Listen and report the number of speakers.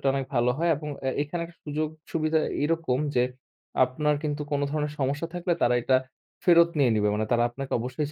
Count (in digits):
1